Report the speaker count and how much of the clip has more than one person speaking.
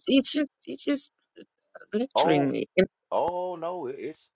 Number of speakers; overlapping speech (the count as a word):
two, about 8%